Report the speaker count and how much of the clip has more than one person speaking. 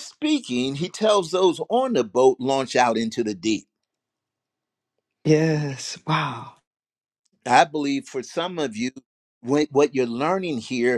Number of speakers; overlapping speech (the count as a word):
two, no overlap